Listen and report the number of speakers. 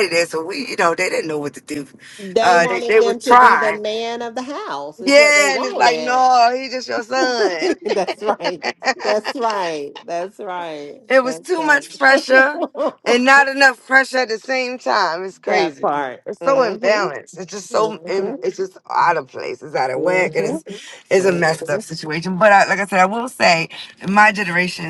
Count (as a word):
two